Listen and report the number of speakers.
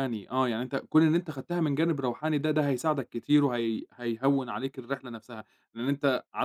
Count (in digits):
1